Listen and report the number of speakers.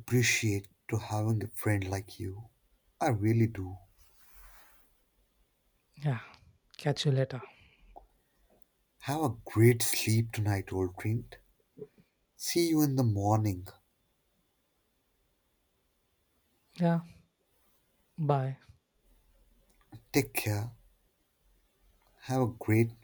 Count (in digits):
2